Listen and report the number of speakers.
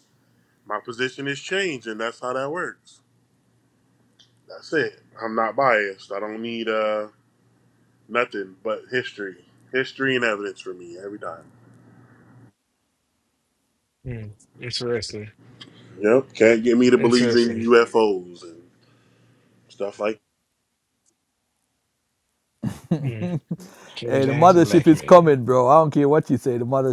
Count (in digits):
3